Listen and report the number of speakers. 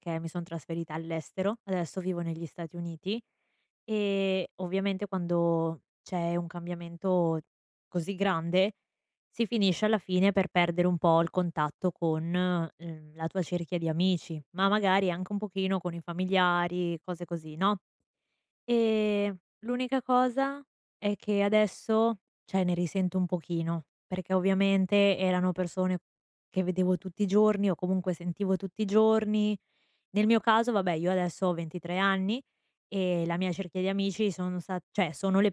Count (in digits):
1